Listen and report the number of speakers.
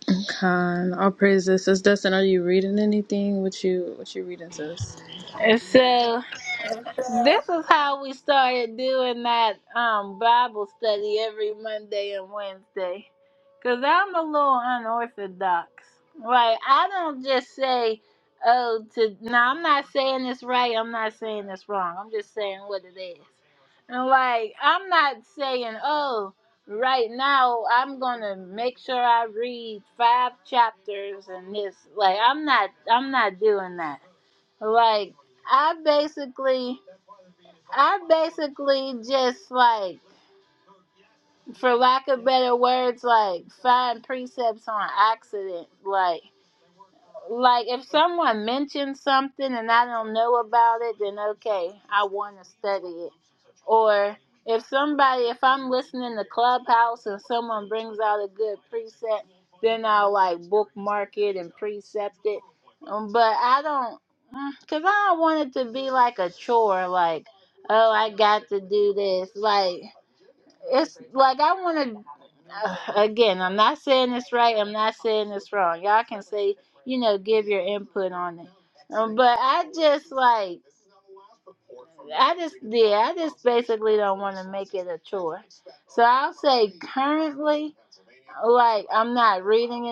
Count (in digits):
2